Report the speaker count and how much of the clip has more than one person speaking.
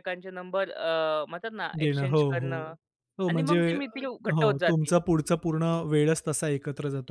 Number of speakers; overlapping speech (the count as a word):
two, about 28%